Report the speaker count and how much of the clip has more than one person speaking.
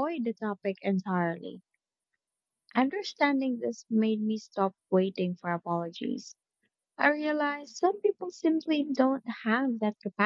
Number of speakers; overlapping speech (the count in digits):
1, no overlap